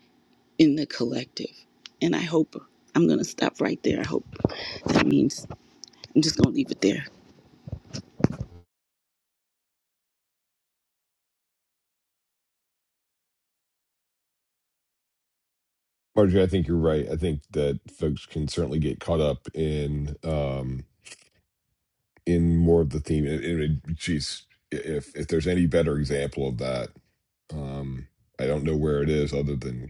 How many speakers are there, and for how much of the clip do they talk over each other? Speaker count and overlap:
2, no overlap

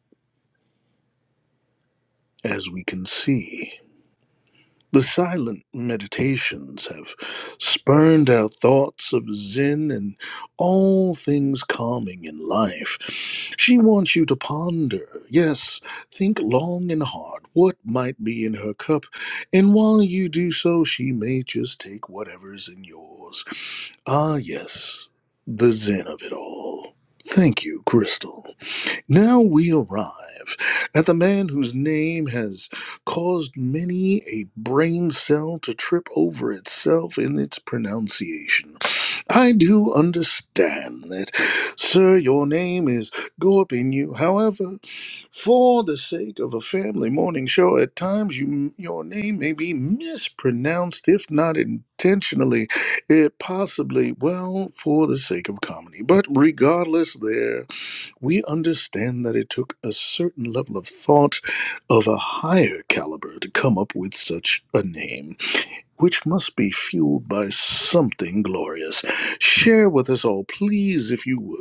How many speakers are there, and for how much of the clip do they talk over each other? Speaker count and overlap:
1, no overlap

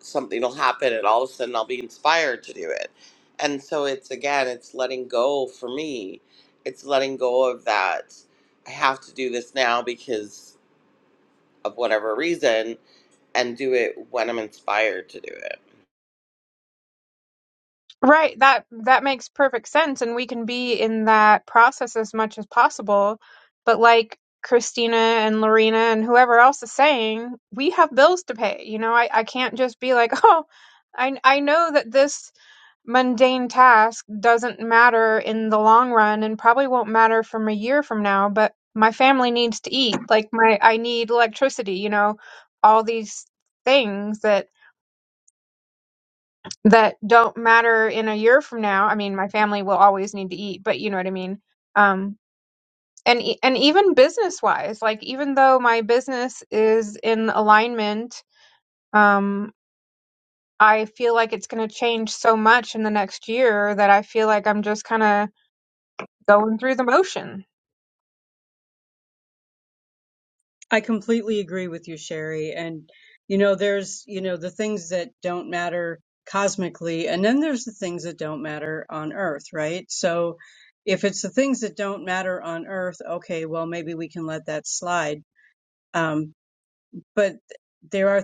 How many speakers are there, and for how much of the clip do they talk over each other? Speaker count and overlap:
3, no overlap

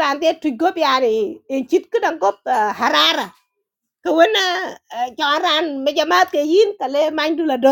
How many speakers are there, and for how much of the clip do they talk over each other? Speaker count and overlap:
1, no overlap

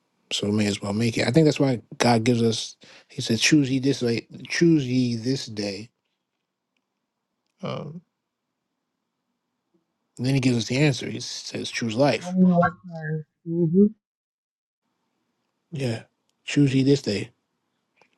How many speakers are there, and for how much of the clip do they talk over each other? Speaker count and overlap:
2, about 1%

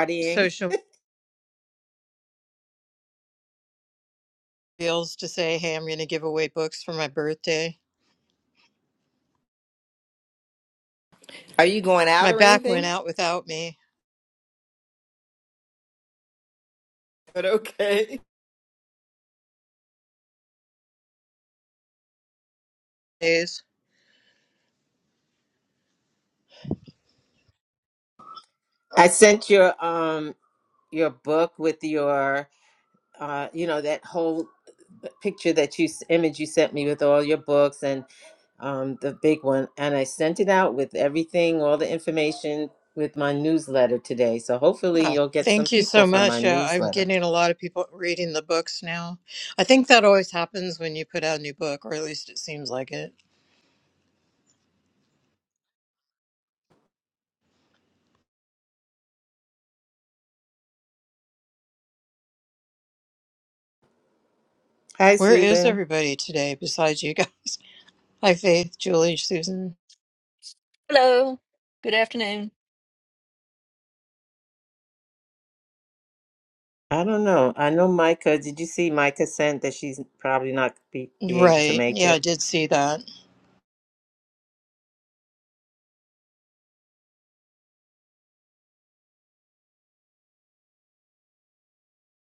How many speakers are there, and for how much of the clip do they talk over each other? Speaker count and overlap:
4, about 5%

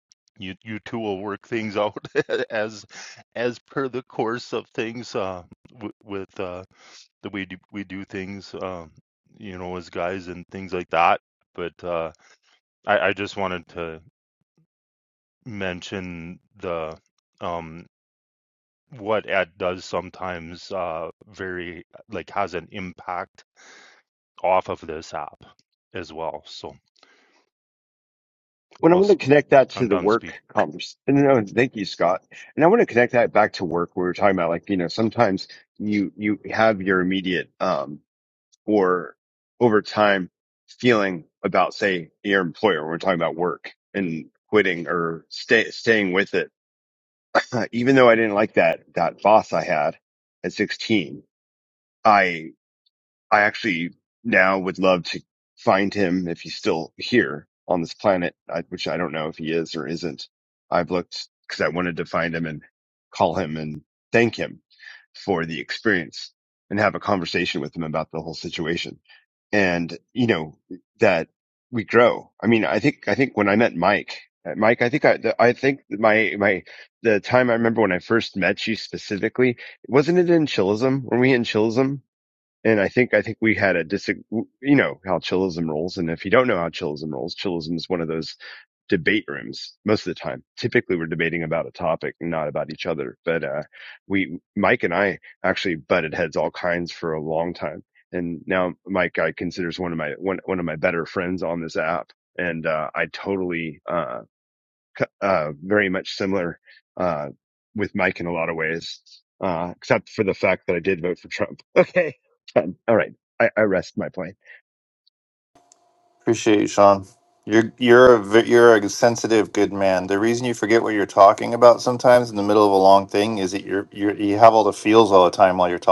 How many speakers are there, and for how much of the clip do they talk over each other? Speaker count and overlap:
3, about 1%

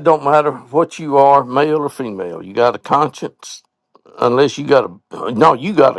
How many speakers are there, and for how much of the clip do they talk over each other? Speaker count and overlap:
1, no overlap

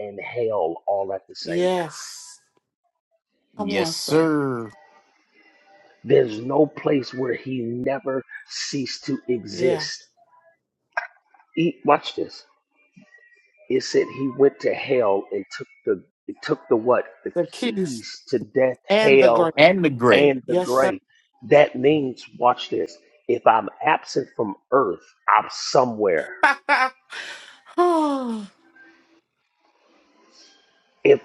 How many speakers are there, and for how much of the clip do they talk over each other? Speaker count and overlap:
3, about 10%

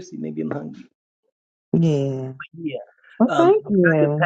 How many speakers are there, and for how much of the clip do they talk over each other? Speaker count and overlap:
2, about 23%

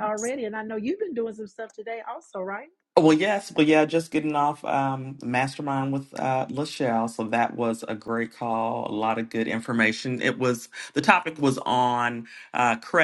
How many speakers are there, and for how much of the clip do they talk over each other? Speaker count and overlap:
2, no overlap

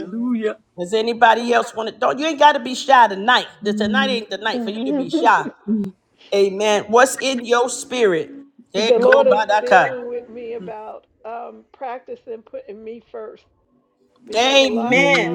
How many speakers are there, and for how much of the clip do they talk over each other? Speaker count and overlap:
3, about 23%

